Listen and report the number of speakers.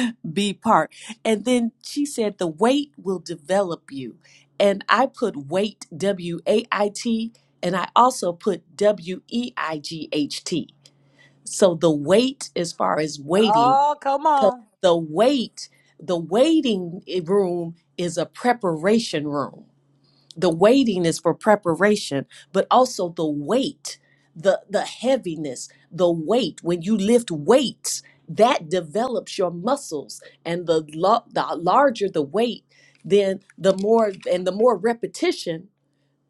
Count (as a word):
two